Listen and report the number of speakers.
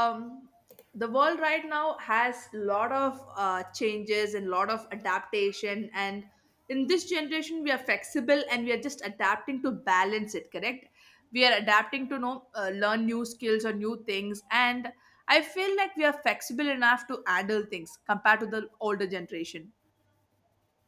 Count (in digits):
1